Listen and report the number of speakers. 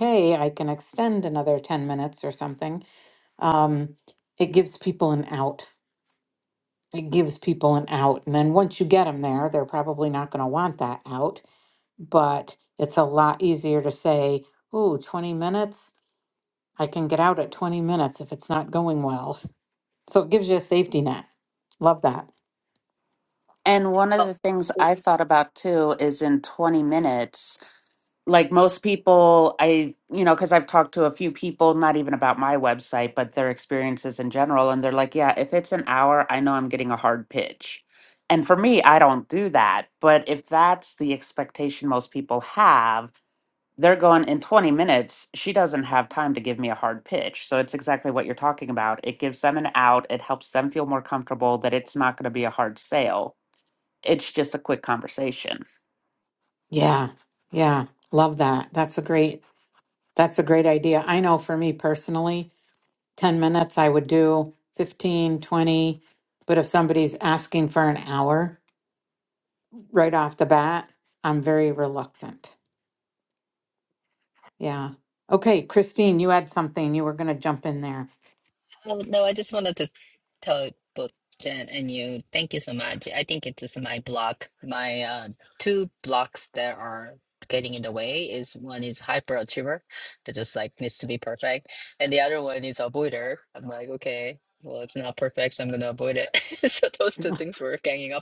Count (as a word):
three